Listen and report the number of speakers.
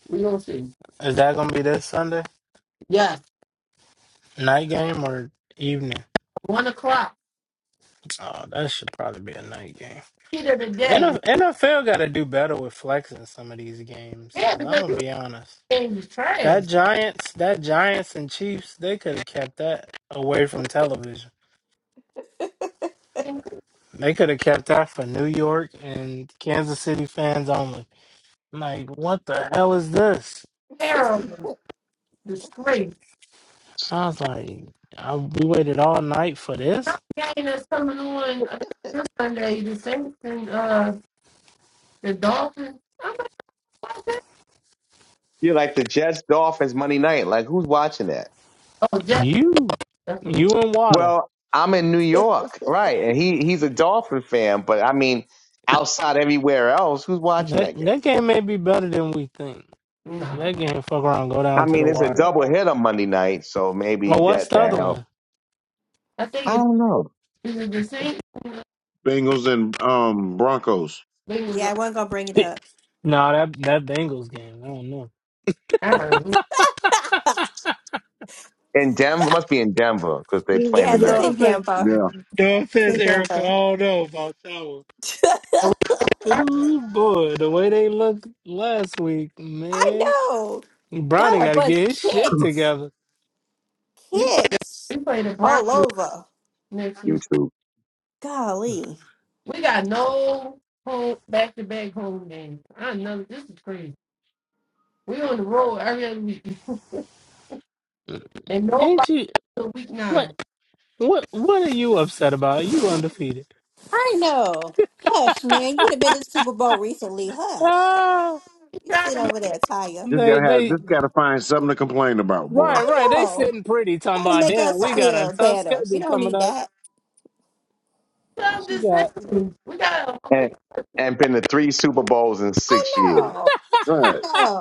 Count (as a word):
five